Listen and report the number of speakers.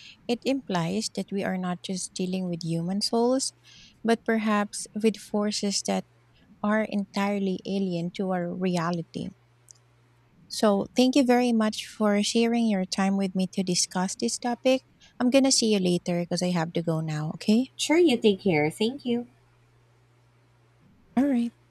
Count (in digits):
2